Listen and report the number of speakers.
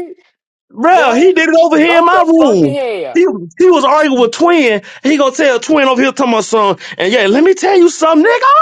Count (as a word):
two